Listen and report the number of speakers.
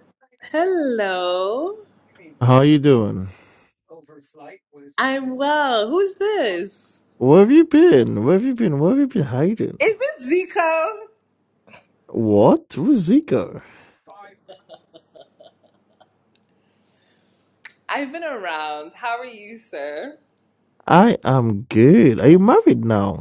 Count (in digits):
2